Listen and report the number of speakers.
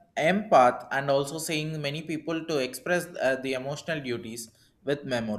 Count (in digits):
1